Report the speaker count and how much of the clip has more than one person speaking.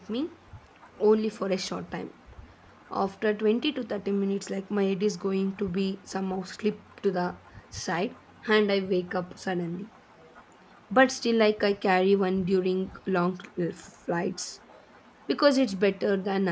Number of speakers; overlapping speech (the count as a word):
one, no overlap